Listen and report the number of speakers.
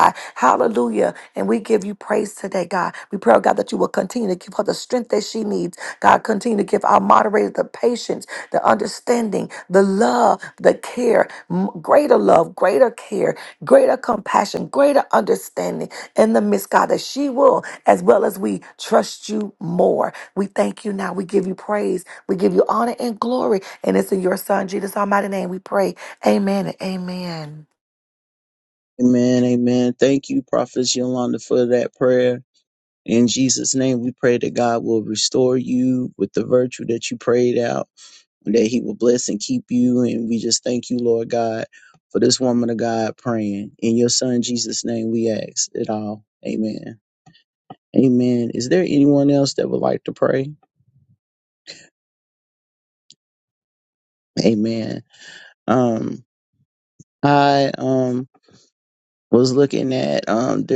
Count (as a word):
two